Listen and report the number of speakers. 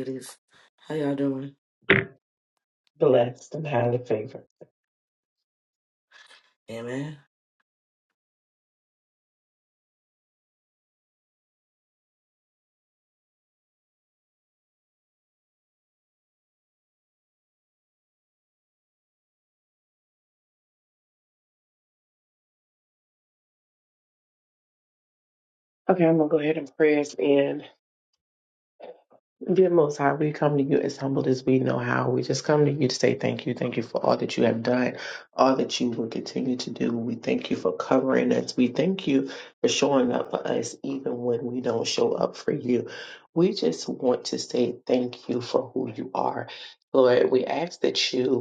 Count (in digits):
2